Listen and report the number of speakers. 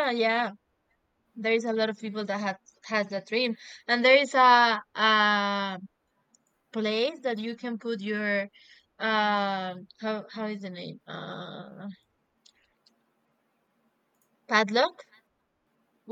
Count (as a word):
one